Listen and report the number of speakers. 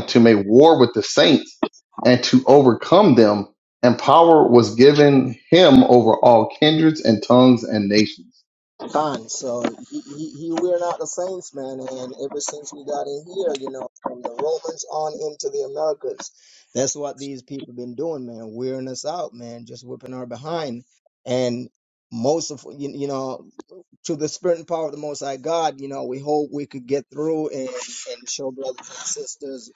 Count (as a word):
two